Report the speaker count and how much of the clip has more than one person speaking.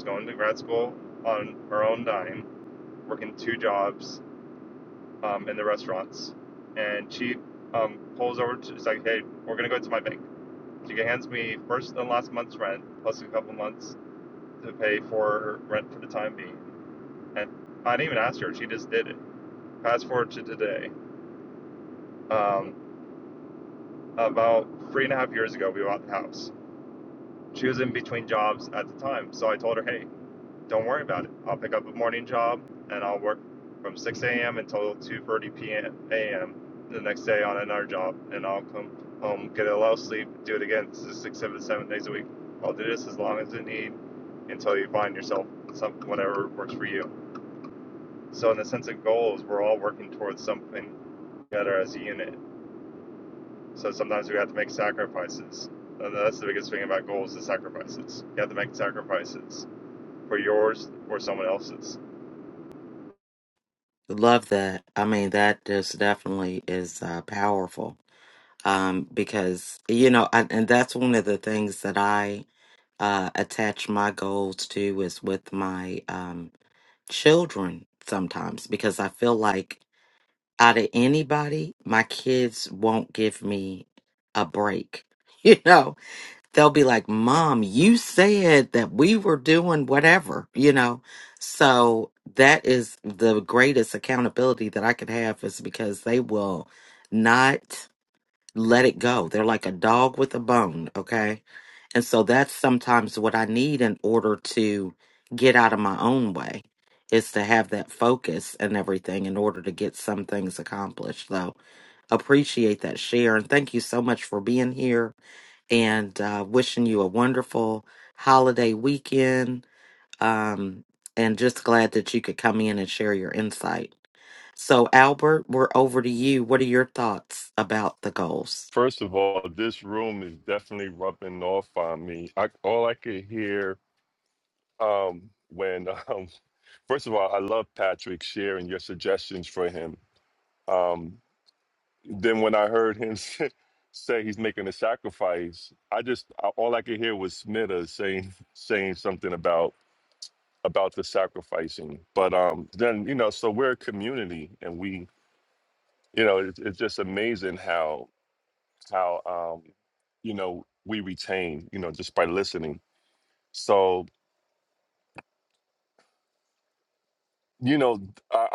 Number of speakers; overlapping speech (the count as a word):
three, no overlap